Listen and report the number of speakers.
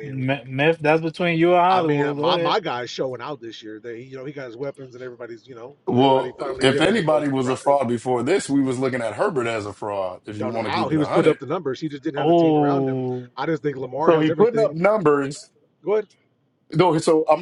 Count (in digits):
3